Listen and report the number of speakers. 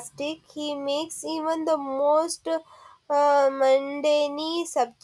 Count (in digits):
1